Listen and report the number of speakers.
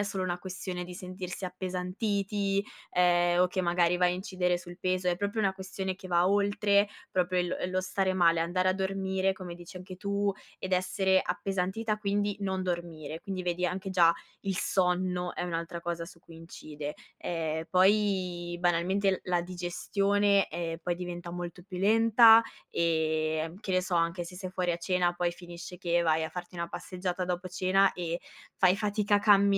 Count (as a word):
one